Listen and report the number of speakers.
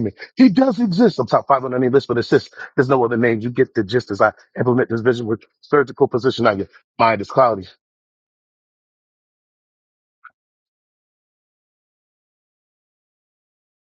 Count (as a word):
one